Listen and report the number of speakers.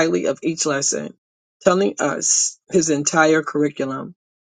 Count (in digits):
1